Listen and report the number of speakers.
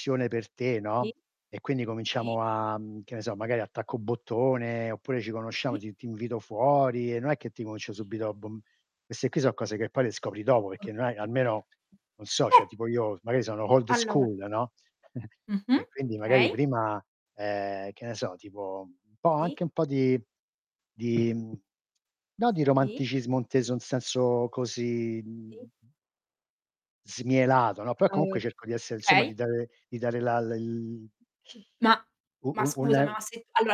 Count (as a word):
two